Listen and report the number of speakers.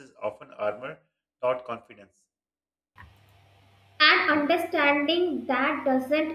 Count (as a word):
two